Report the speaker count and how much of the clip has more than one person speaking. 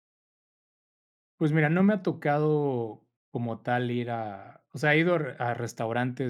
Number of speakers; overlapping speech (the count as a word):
one, no overlap